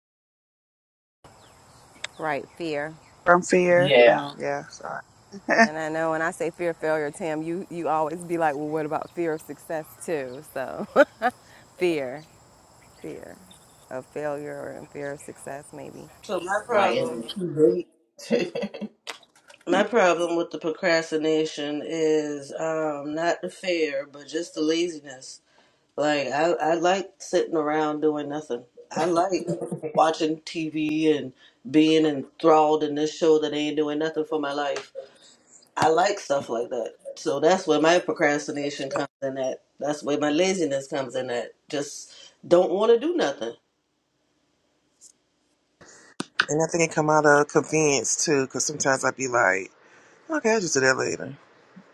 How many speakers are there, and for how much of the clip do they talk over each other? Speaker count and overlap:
five, about 2%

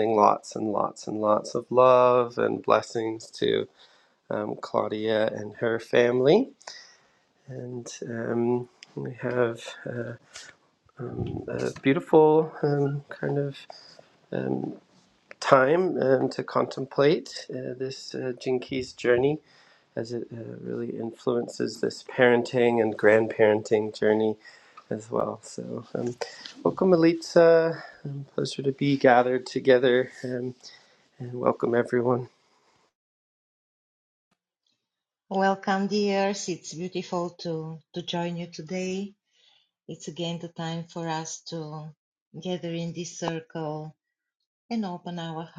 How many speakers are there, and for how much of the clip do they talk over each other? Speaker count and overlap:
two, no overlap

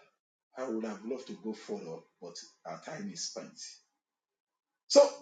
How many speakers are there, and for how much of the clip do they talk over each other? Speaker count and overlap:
one, no overlap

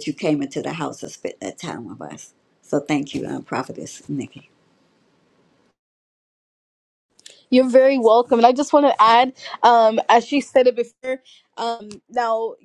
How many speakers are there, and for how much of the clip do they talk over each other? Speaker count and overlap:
two, no overlap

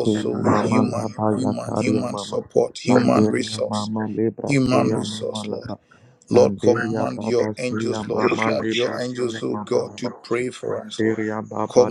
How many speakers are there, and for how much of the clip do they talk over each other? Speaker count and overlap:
two, about 75%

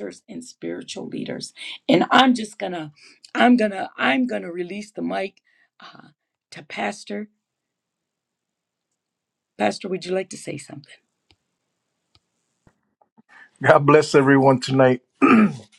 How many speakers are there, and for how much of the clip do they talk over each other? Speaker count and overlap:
two, no overlap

